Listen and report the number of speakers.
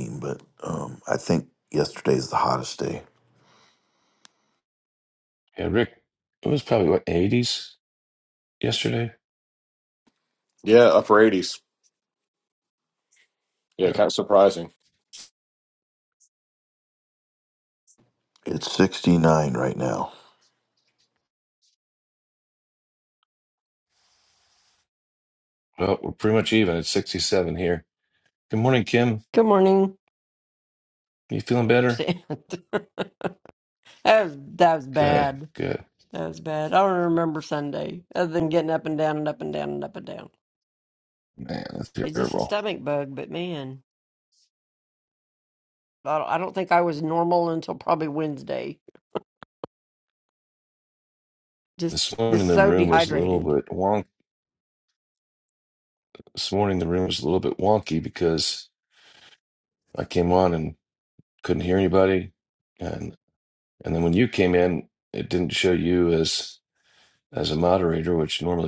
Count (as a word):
four